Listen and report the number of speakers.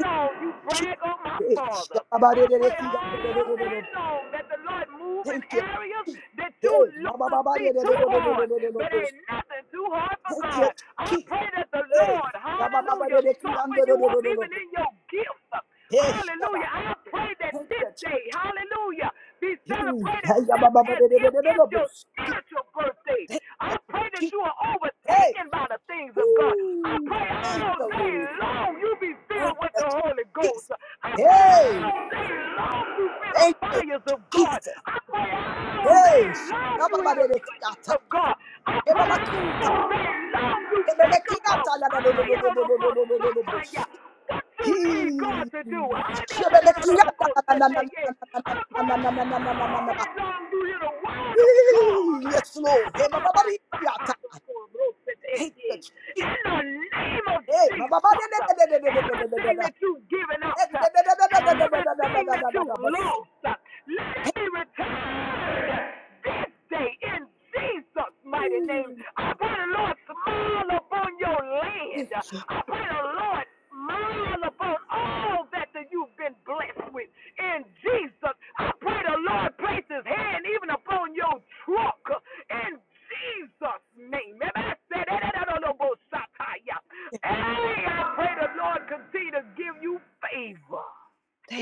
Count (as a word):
two